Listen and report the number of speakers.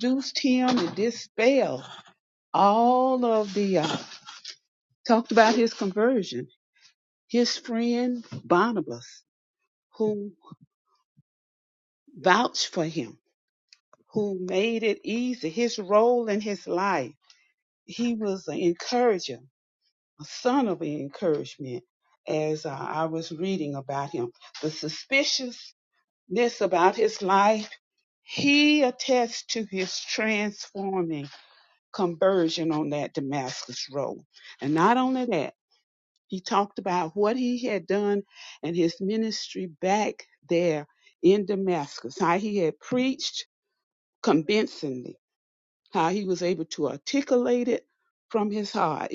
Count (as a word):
one